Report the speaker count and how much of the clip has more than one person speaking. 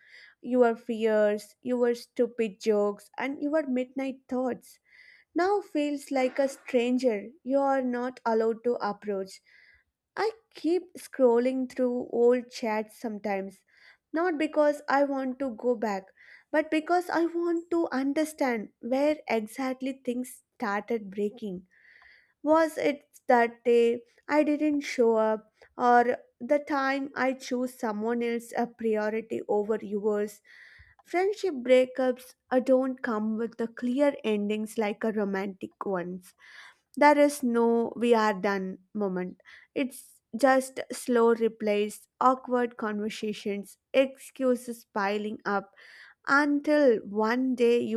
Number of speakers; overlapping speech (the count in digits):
1, no overlap